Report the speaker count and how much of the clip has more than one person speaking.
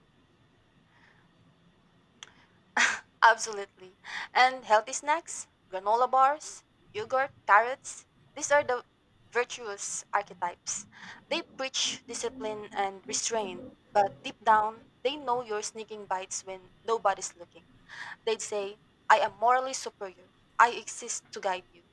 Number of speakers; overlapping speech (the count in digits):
1, no overlap